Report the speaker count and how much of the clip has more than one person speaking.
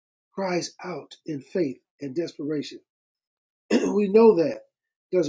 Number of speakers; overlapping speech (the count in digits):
1, no overlap